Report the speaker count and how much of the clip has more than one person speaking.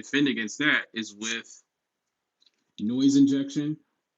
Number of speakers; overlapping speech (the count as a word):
one, no overlap